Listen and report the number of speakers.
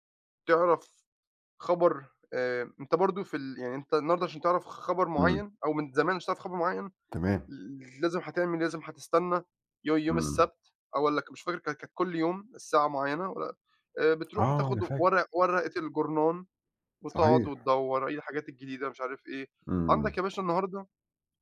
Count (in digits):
2